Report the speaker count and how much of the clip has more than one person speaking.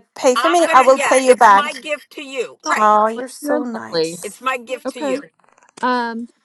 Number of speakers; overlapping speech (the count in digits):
3, about 40%